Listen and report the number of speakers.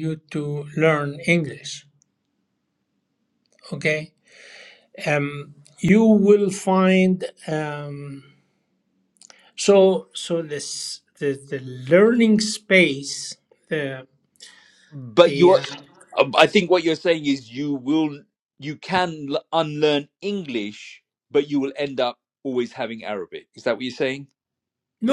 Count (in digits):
2